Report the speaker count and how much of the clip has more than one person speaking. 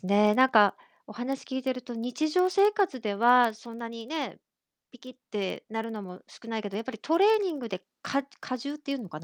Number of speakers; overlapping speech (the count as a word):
one, no overlap